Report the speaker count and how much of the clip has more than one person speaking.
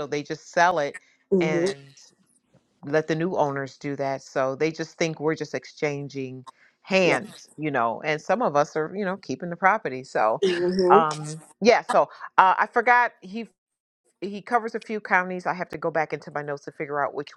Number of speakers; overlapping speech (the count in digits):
2, about 2%